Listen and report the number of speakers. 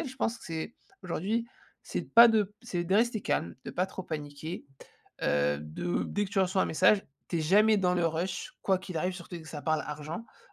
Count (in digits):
1